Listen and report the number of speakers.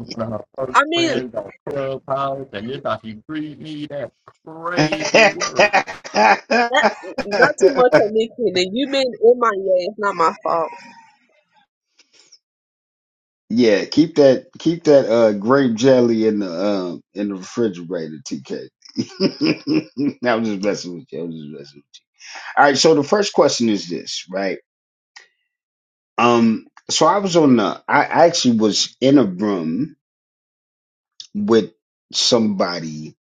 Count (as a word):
three